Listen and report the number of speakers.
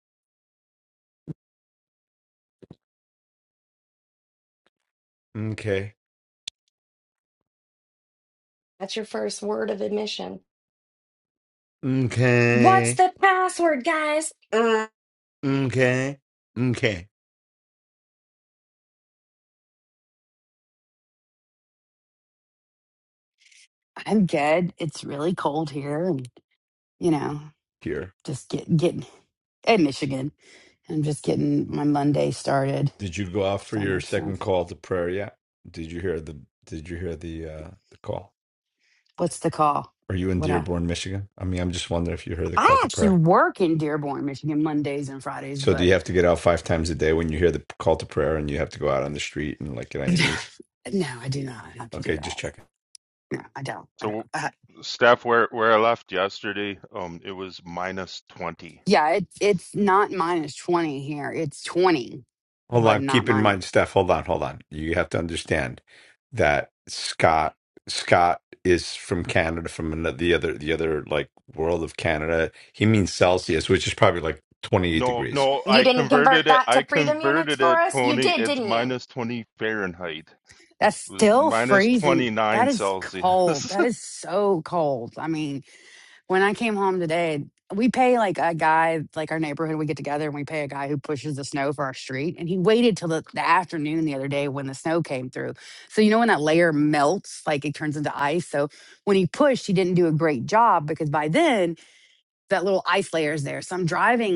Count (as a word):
four